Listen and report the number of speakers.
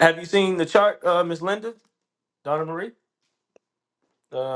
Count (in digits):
1